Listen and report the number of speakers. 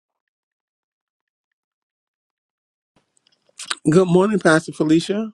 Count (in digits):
1